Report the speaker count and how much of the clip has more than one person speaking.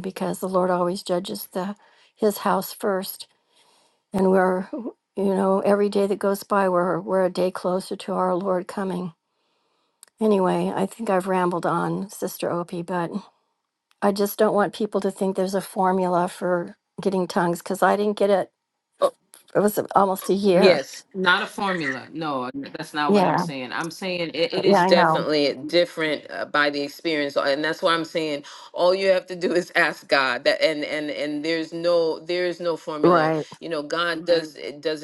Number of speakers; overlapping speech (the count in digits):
2, about 5%